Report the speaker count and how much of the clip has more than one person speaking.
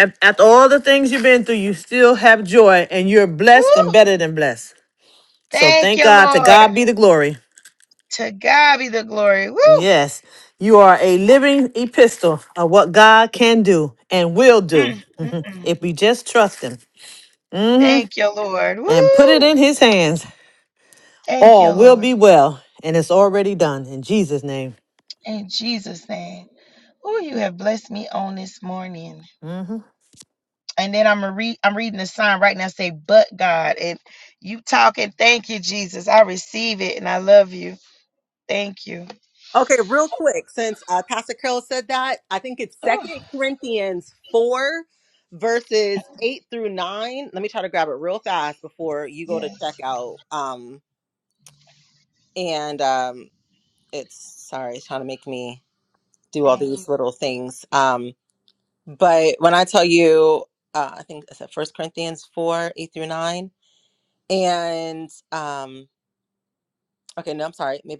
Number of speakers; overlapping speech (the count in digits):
3, about 6%